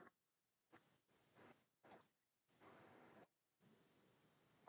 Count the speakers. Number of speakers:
0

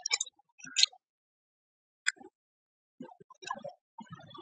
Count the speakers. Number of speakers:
0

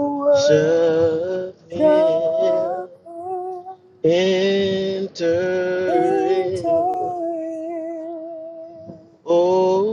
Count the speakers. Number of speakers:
2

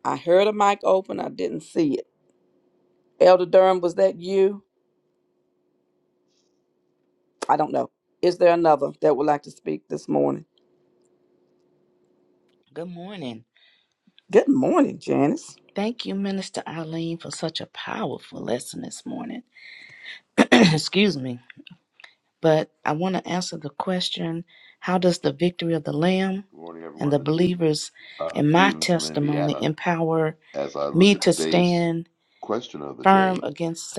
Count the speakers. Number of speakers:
3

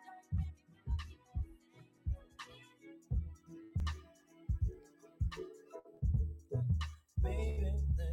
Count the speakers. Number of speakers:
0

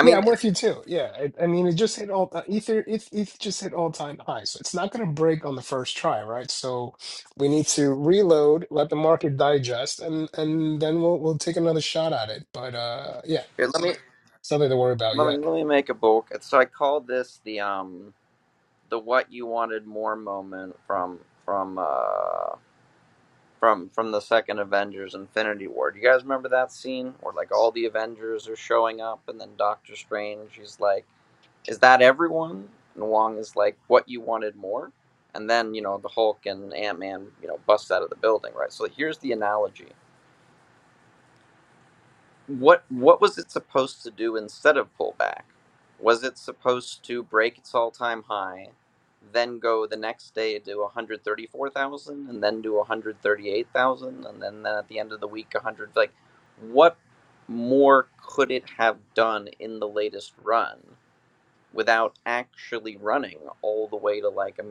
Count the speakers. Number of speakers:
2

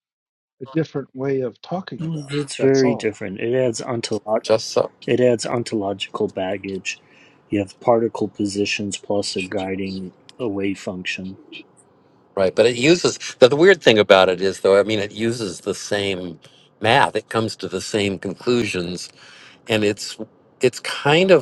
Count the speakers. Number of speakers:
3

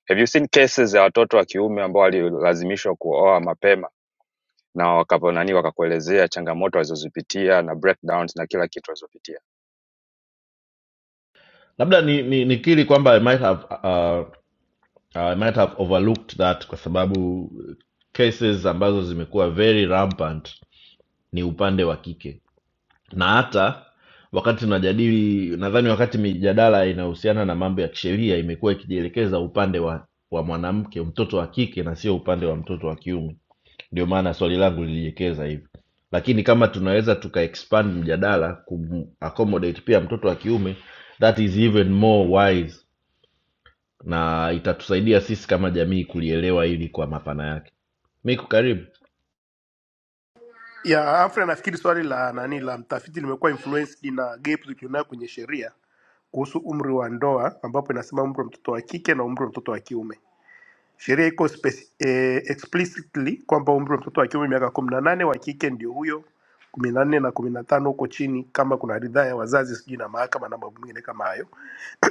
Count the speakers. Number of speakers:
3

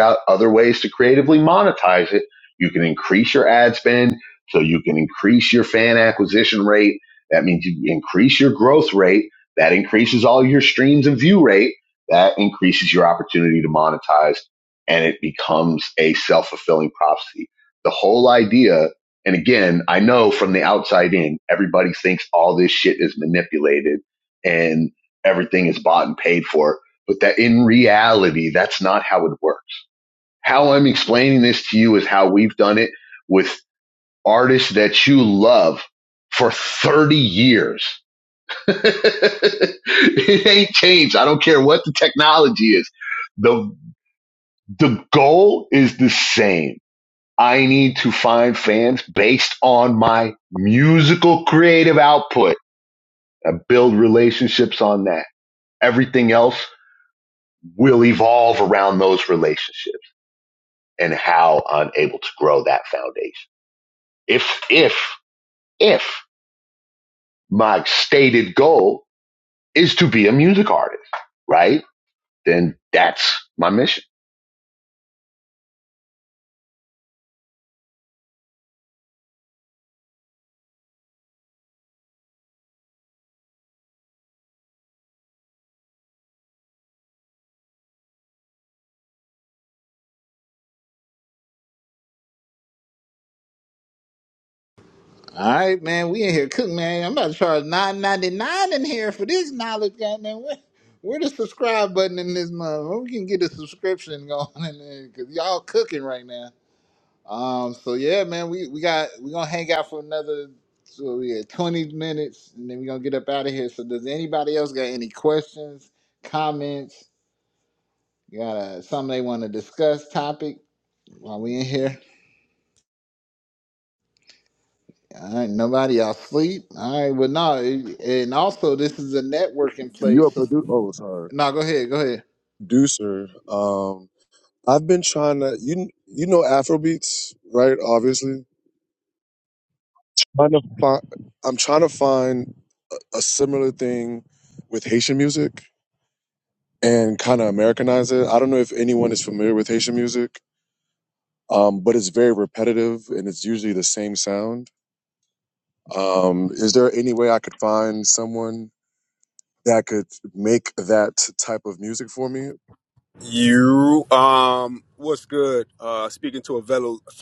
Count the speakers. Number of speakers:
4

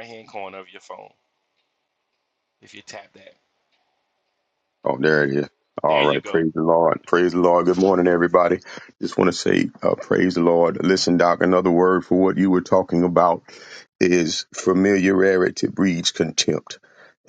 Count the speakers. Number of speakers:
2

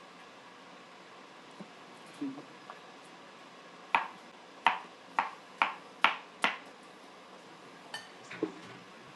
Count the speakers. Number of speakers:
0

